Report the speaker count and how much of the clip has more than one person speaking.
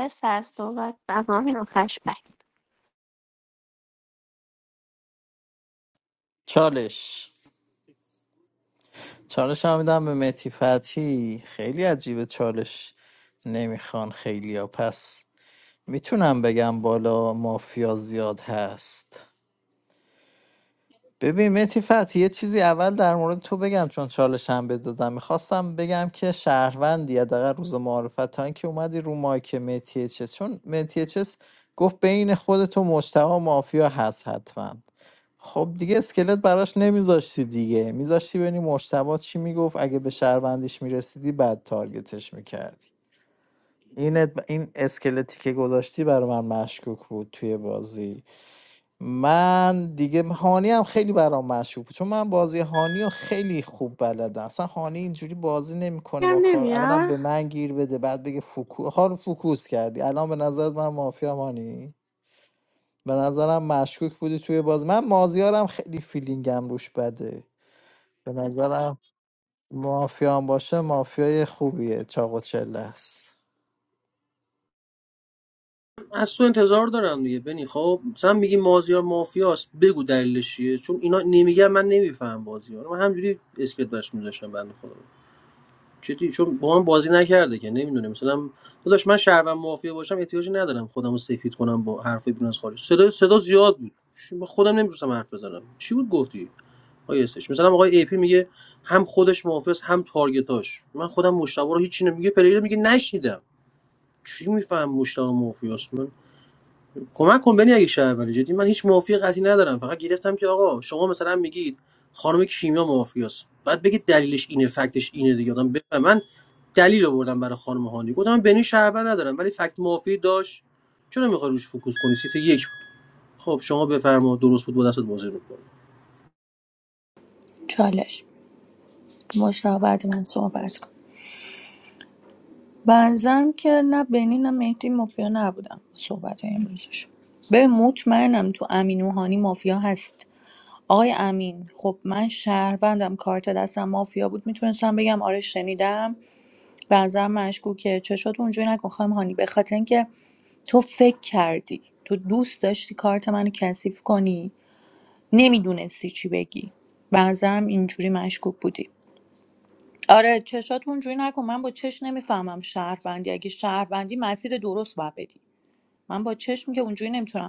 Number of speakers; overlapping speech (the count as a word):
four, about 1%